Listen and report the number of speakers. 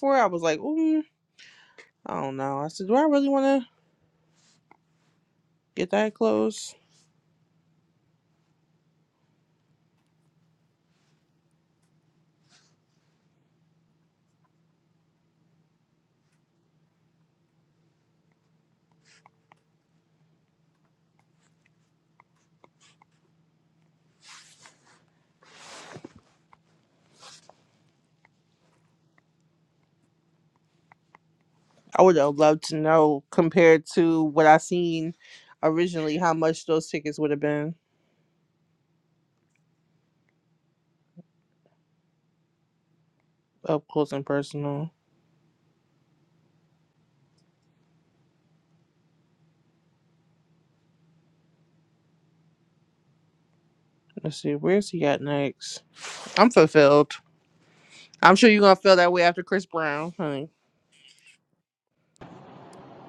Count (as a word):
one